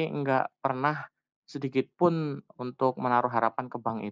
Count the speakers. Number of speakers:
one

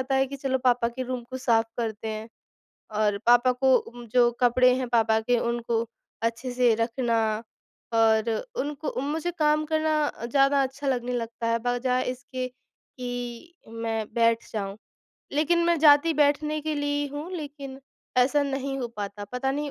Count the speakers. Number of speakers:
one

